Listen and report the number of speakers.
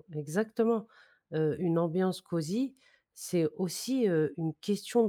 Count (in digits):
1